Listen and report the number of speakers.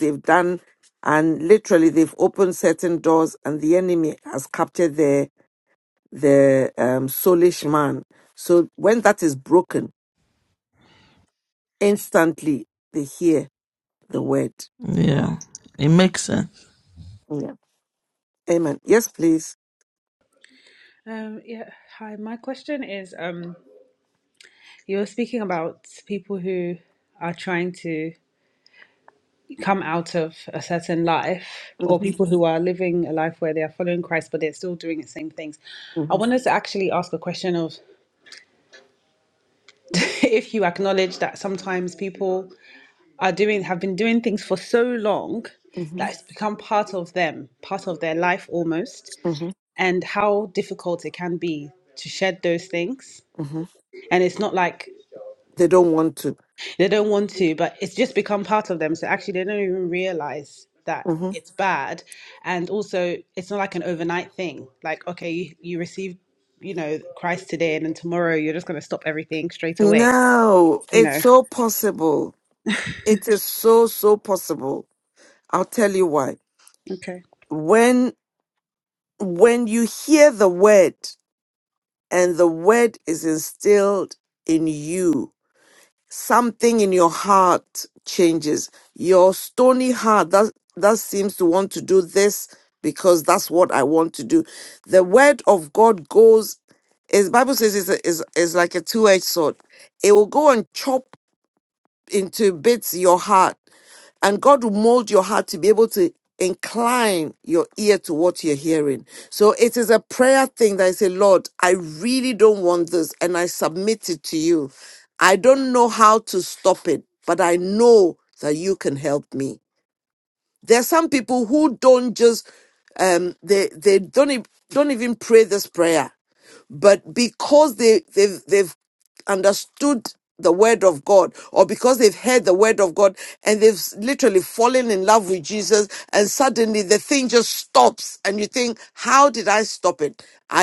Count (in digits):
3